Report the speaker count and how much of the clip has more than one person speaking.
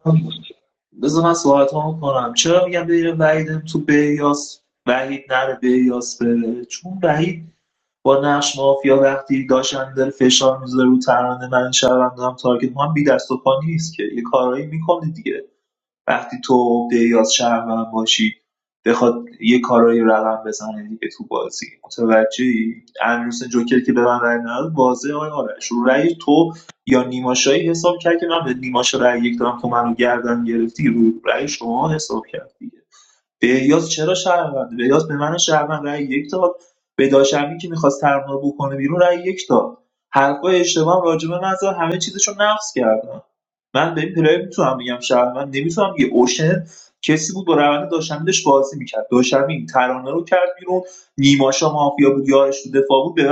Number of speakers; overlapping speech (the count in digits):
1, no overlap